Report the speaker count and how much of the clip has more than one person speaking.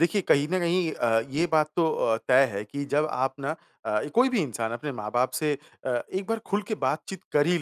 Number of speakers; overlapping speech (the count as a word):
one, no overlap